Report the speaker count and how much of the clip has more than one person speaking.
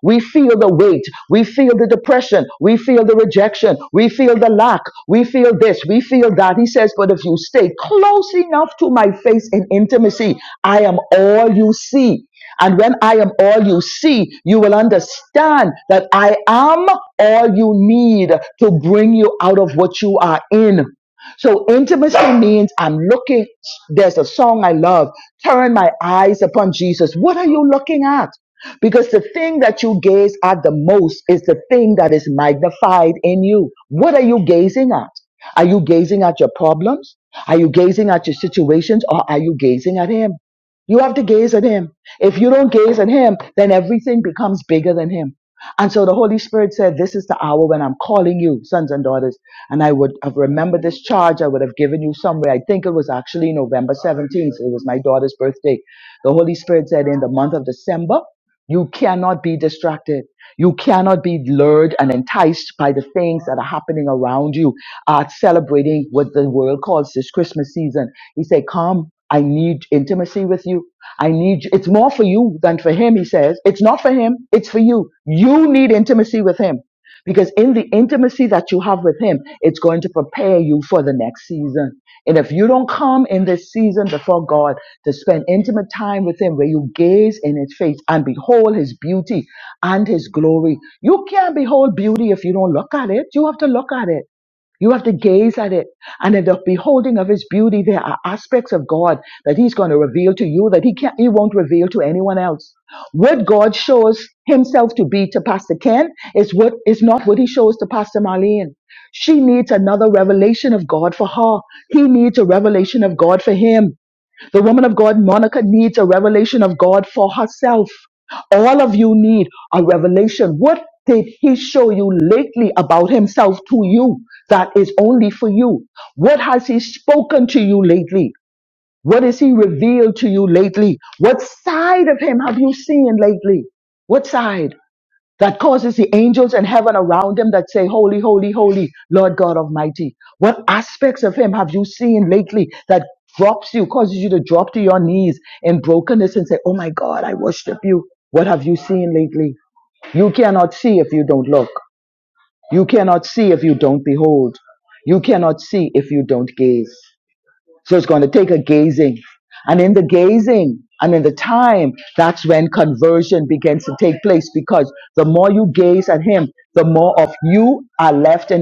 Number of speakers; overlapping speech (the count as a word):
one, no overlap